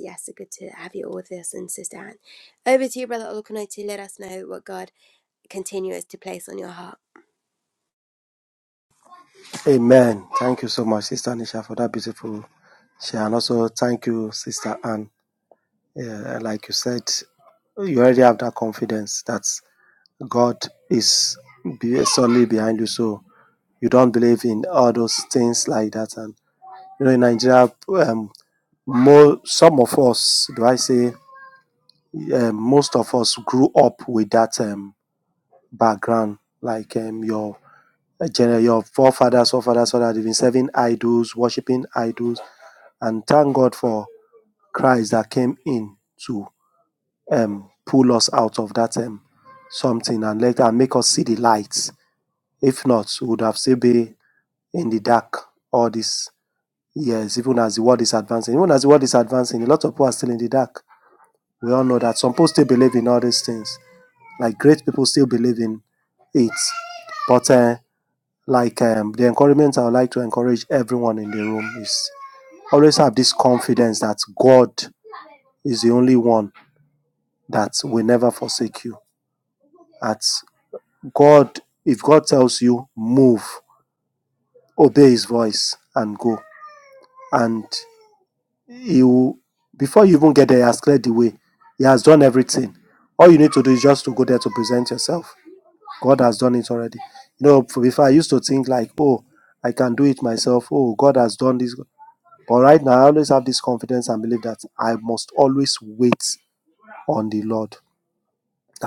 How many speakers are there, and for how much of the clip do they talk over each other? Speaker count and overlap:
2, no overlap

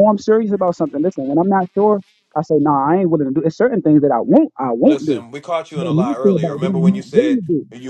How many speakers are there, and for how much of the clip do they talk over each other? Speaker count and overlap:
2, about 25%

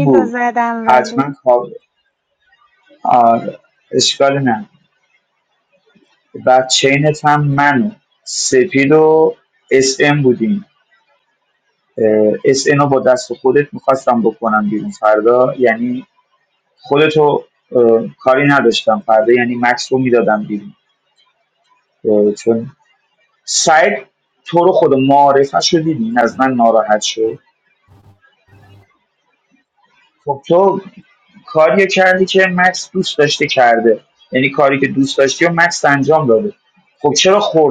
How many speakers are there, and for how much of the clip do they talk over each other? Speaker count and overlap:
2, about 2%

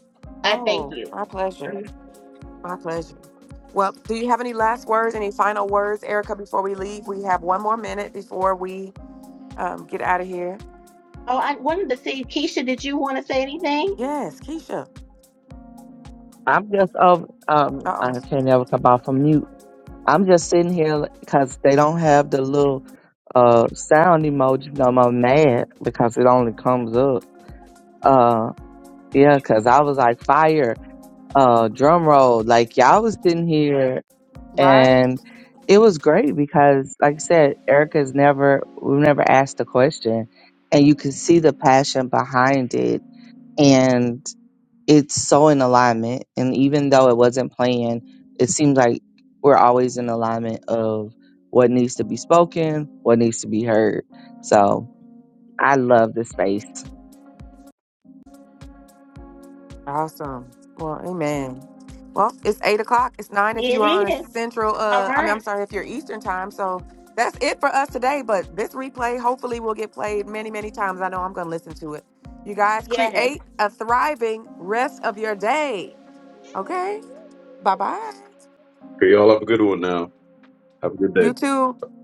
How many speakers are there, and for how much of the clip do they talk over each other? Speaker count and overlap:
4, about 4%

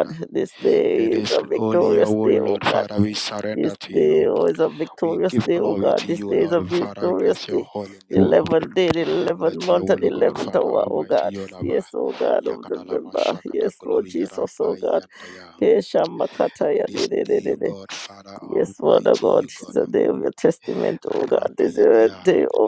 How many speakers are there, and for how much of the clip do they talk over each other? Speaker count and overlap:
2, about 60%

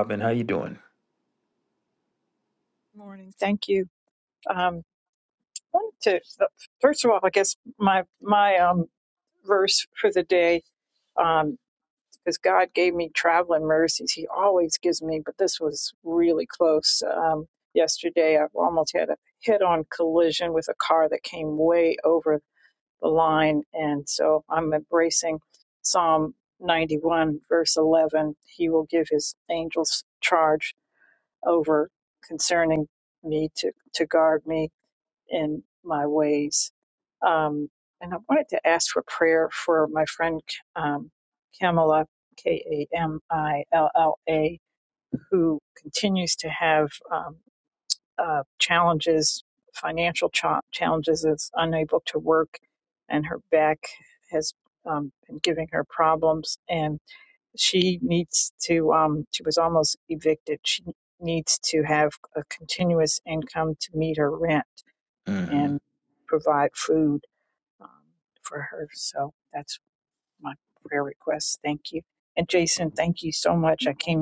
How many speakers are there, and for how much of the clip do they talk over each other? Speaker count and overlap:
2, under 1%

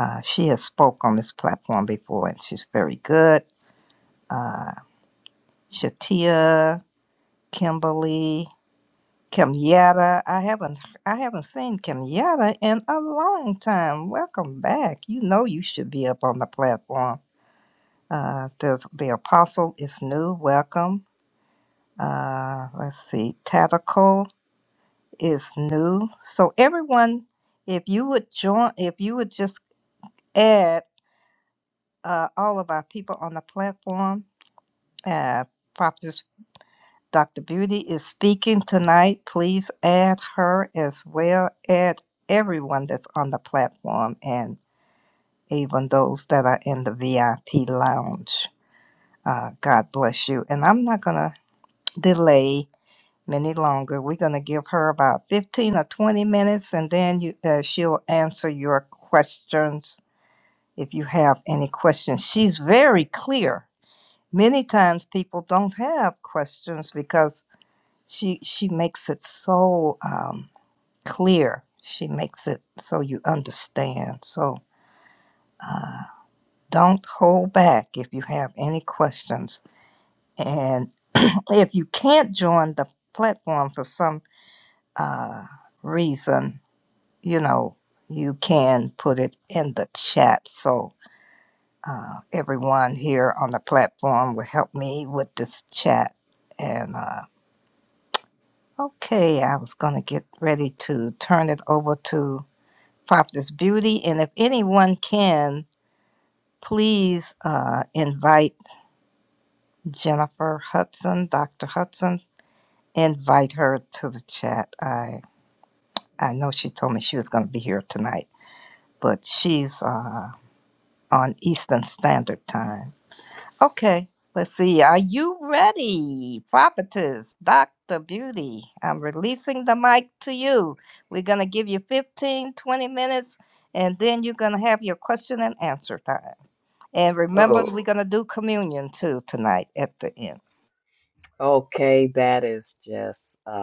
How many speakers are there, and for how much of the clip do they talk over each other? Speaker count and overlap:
2, under 1%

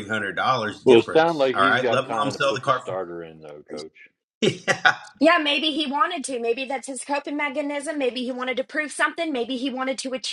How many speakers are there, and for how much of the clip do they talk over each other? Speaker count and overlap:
3, about 17%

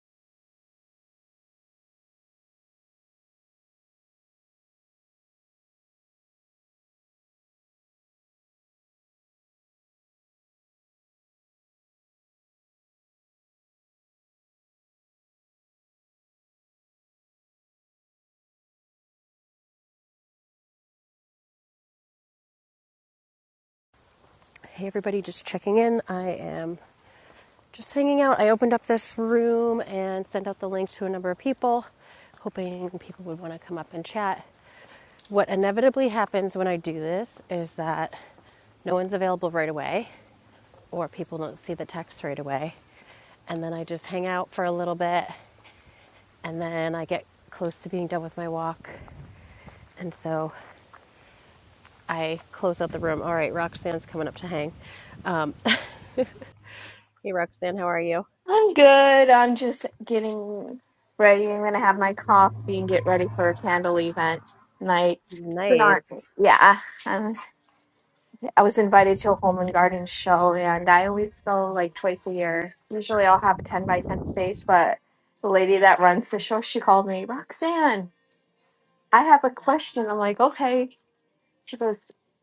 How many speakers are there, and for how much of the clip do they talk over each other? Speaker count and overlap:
2, under 1%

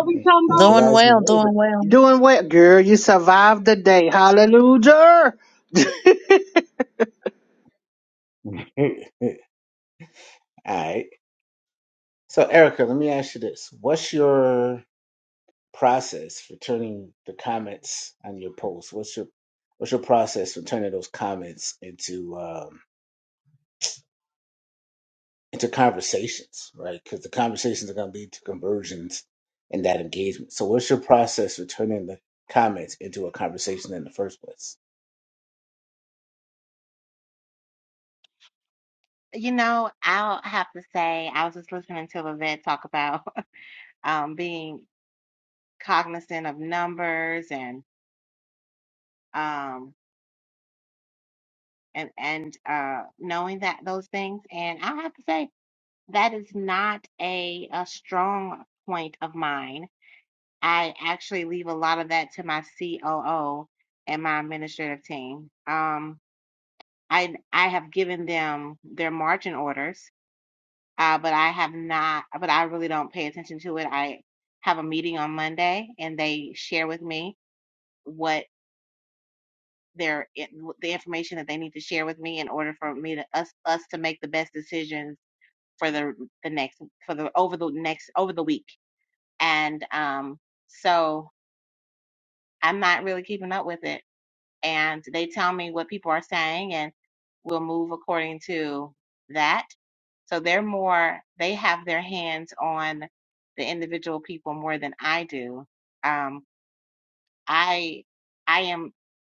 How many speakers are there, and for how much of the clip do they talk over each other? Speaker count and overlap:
4, about 1%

